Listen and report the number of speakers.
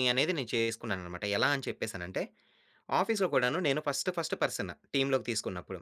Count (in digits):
1